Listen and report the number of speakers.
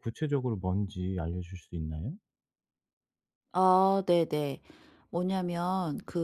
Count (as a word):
two